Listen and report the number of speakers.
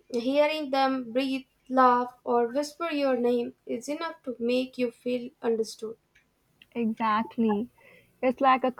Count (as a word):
two